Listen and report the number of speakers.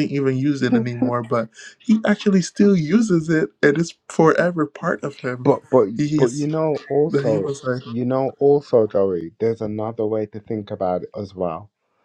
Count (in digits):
2